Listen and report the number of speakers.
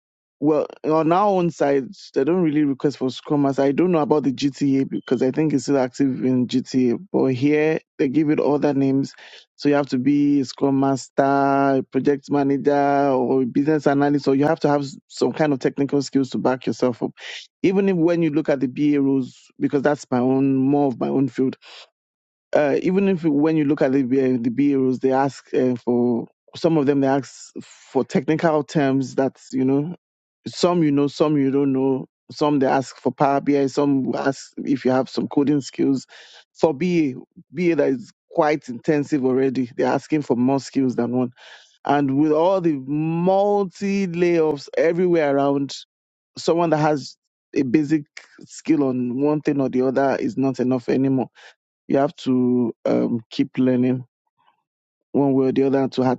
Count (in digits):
1